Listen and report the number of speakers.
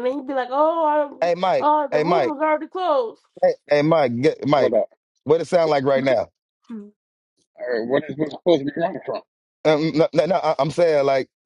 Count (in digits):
3